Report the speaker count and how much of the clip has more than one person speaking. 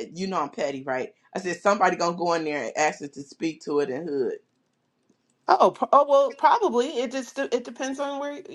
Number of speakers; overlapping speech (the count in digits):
2, no overlap